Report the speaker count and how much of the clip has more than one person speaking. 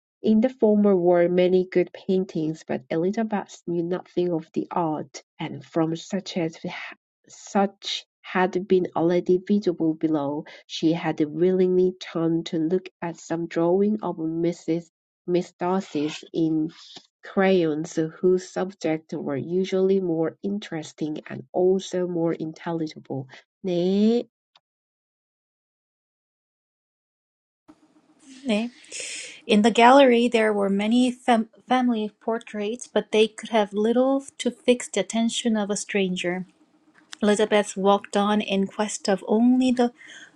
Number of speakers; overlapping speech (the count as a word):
two, no overlap